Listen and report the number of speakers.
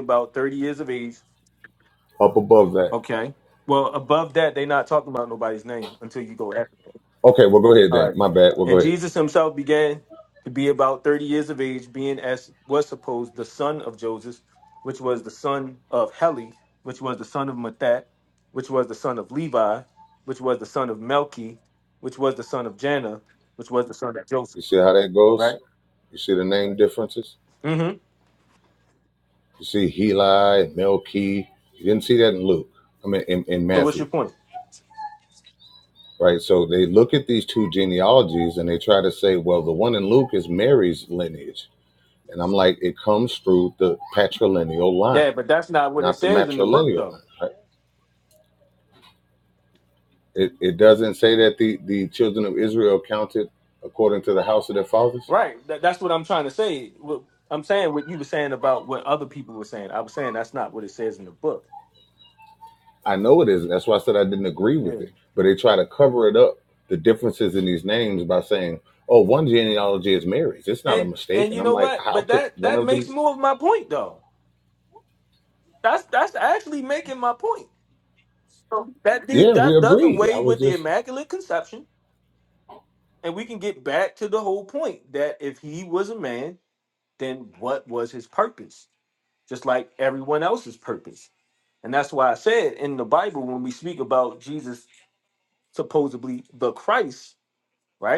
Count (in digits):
2